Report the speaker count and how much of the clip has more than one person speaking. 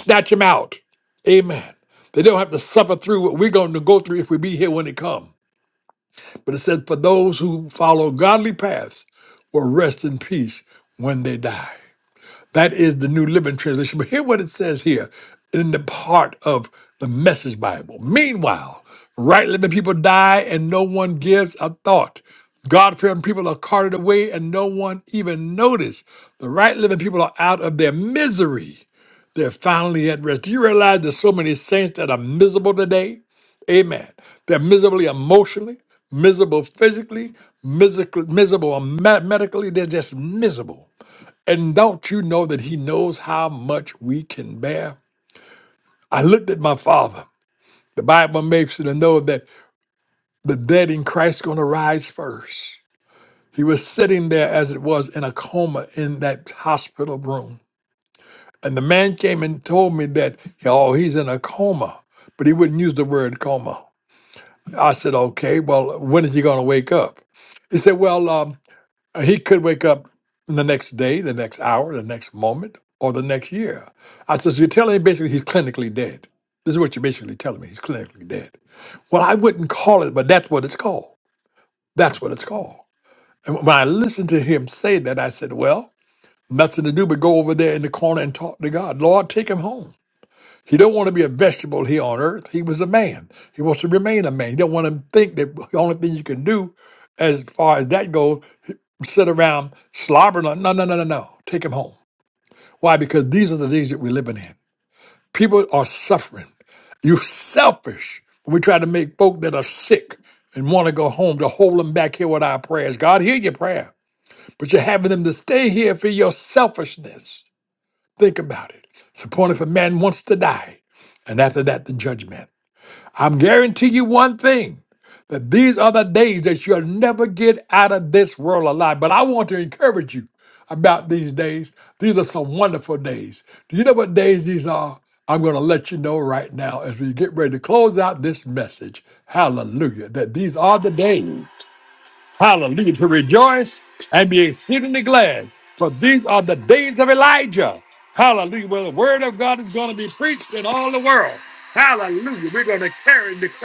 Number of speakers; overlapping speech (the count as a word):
one, no overlap